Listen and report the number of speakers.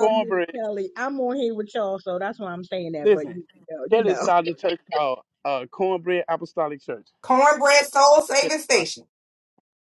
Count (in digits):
3